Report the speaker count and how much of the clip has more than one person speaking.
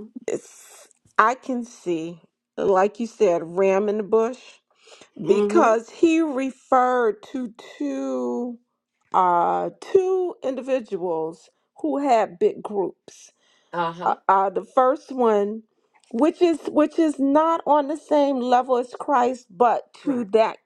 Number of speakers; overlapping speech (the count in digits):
2, about 4%